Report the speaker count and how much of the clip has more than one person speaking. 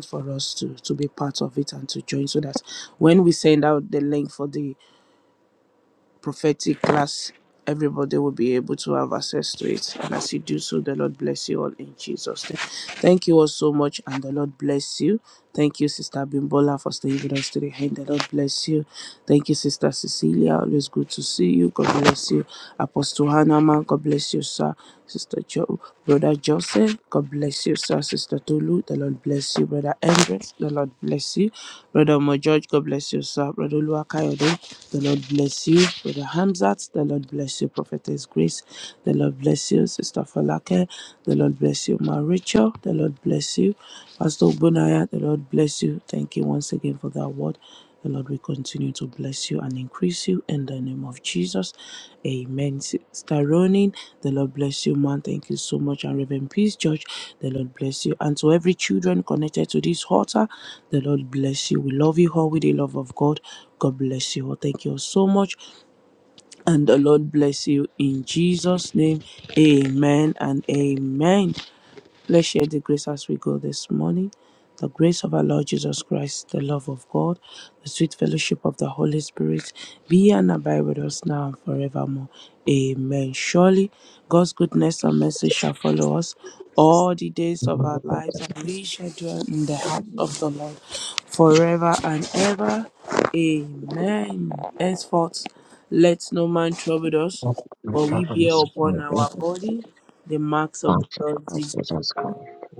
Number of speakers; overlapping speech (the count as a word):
two, about 2%